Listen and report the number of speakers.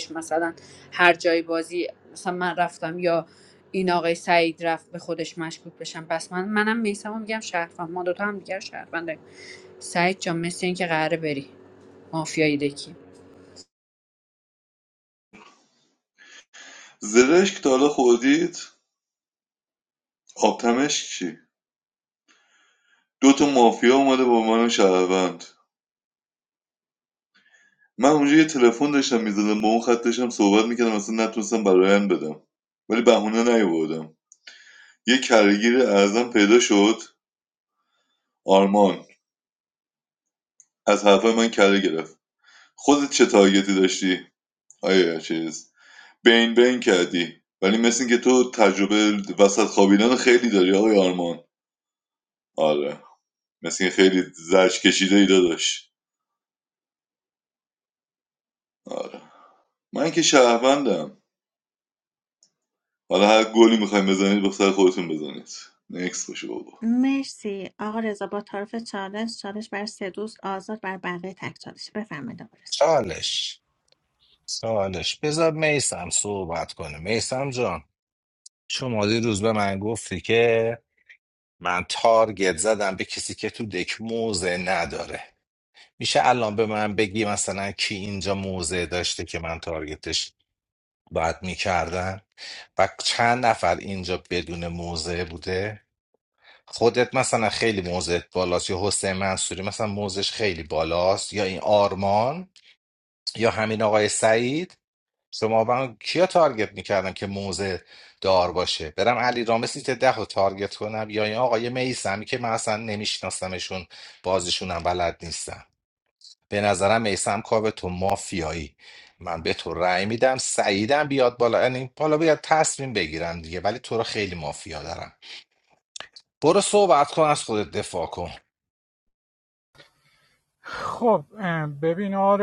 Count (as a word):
five